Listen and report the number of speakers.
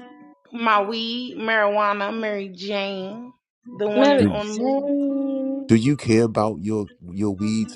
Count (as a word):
three